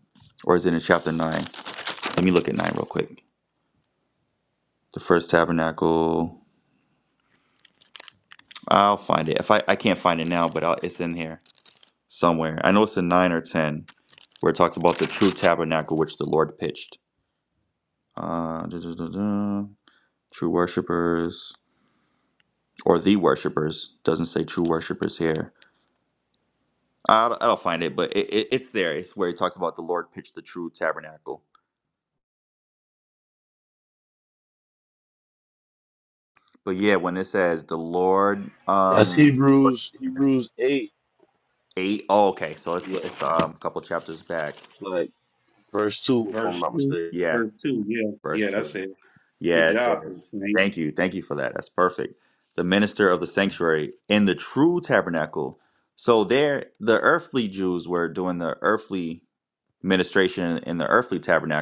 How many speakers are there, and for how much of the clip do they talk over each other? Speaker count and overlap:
three, about 4%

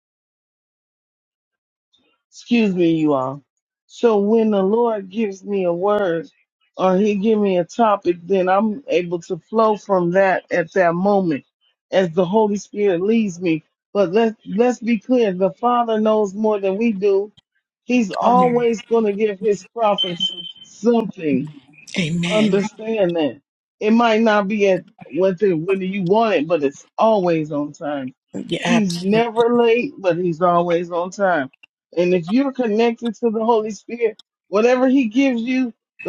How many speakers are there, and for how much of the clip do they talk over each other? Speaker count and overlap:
two, about 3%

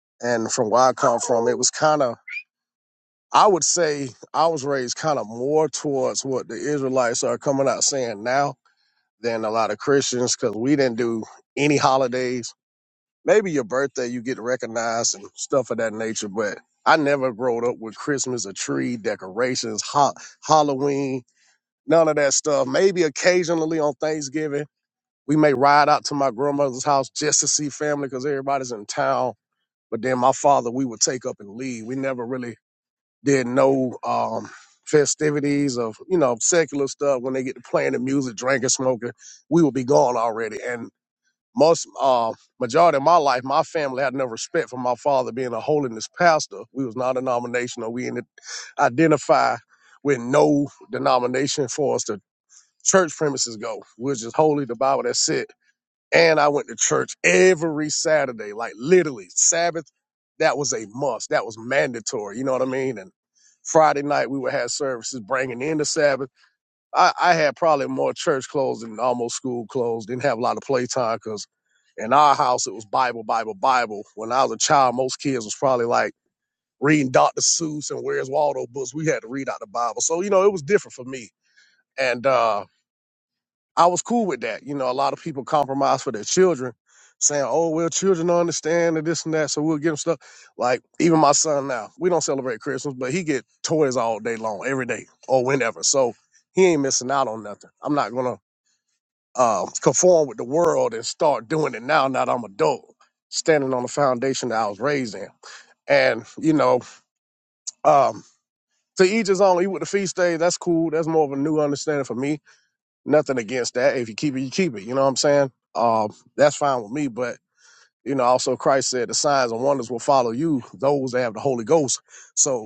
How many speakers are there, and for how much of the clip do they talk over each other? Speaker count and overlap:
one, no overlap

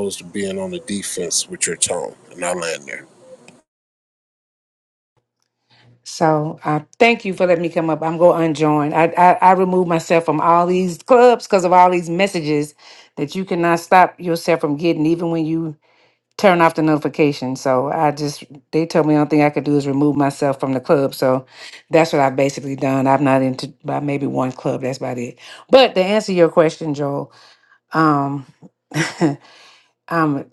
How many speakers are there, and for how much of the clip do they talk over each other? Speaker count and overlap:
two, no overlap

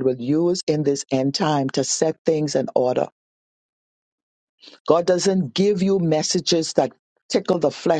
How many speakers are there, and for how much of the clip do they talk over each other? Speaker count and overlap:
one, no overlap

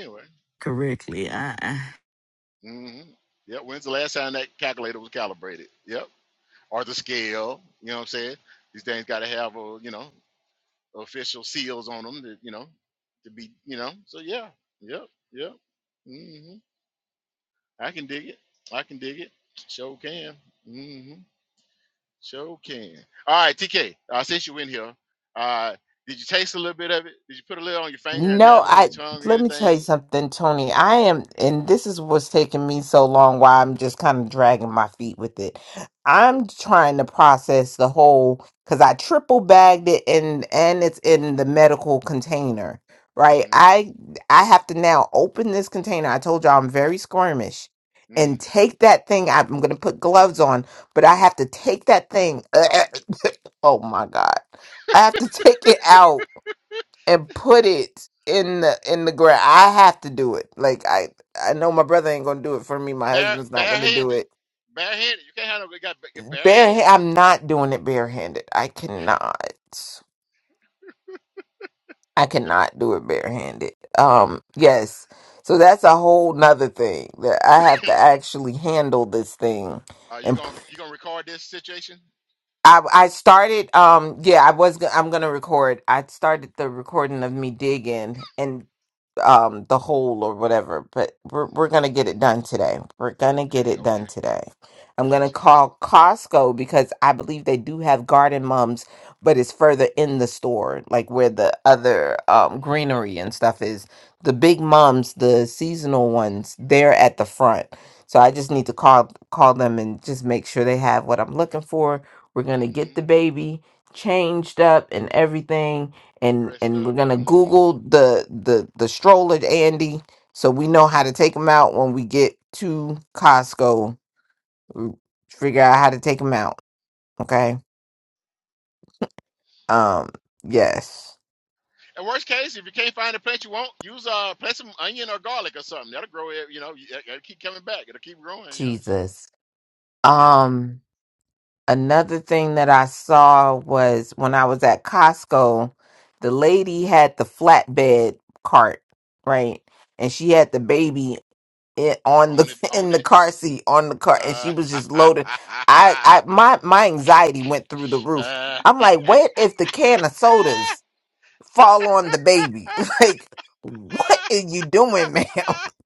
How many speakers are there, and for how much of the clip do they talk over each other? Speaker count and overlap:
three, about 5%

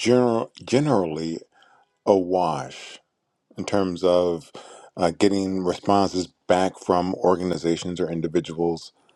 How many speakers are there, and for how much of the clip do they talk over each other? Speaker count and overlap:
one, no overlap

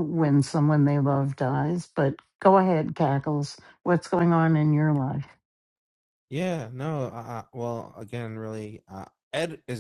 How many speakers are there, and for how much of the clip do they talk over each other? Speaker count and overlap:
two, no overlap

